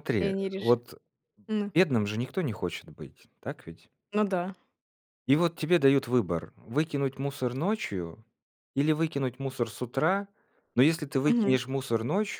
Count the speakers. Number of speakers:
2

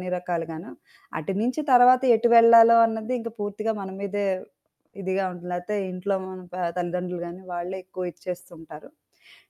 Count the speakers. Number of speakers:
1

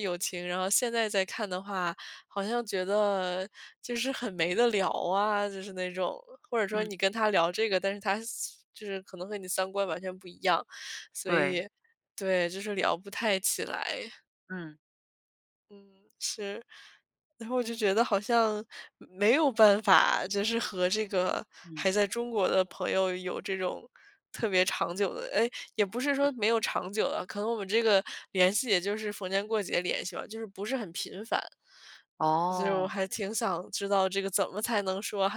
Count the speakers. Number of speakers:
2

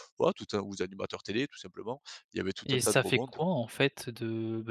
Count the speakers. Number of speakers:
2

